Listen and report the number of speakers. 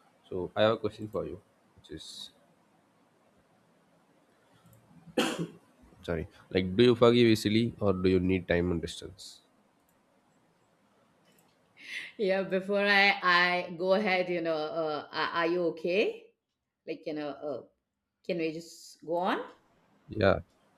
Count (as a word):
two